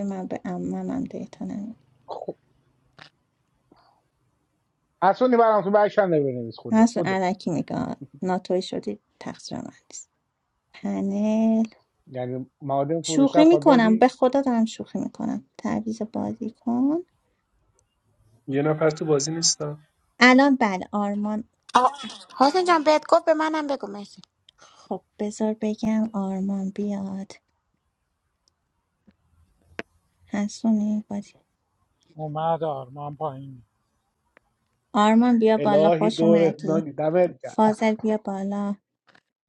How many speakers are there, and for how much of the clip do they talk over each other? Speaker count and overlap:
5, about 7%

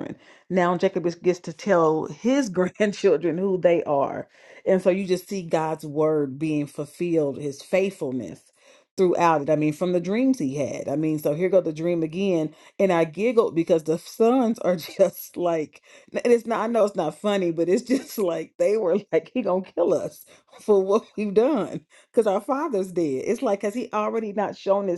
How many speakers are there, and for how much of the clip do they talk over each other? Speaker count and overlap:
1, no overlap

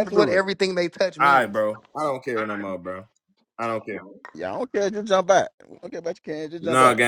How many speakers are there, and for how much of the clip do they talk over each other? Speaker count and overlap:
3, about 15%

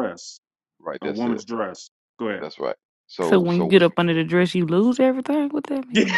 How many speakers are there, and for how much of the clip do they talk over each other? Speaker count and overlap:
3, about 23%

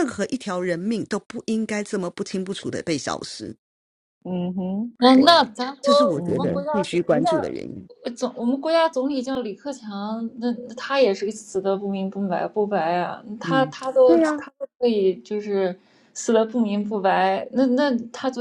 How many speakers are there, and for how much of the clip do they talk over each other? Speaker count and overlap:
3, about 13%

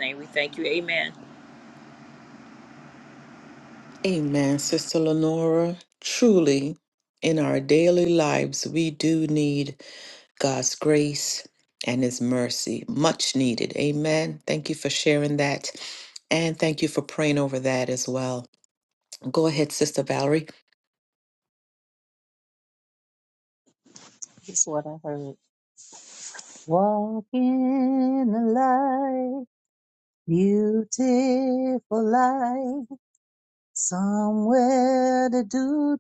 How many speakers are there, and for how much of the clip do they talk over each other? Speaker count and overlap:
3, no overlap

